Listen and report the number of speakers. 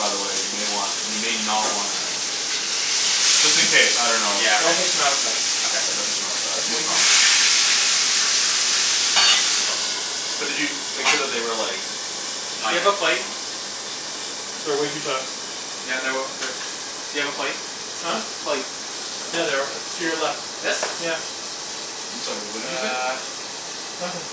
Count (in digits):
4